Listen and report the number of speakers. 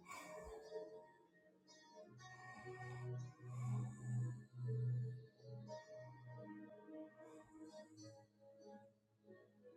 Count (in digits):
0